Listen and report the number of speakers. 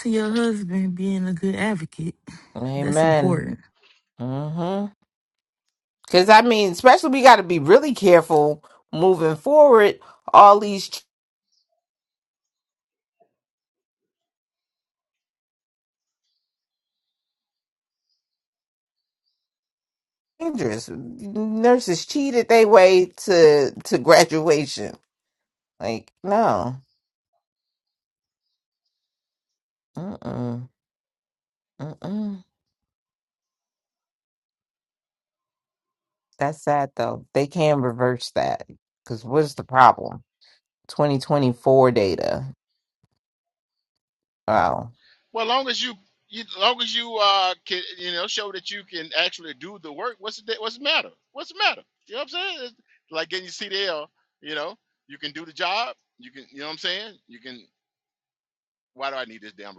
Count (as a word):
three